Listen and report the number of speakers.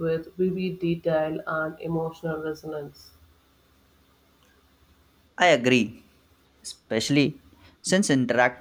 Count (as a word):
two